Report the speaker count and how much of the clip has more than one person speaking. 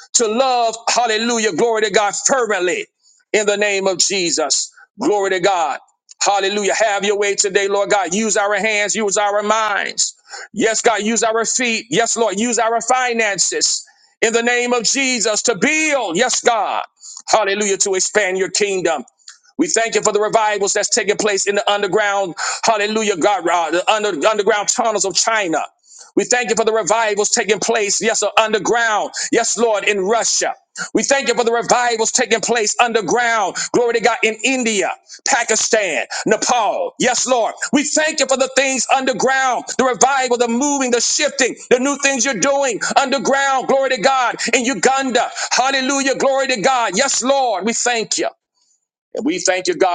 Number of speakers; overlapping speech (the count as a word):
one, no overlap